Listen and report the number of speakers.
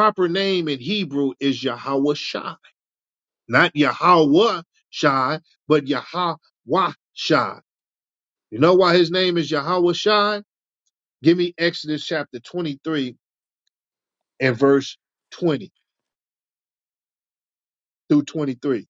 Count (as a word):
one